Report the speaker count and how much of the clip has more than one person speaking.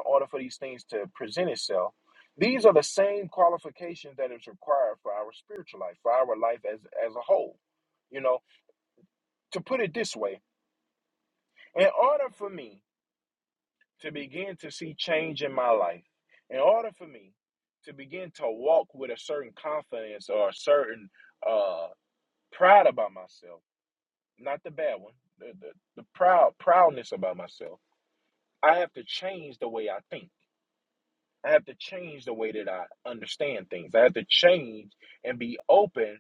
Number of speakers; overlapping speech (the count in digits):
1, no overlap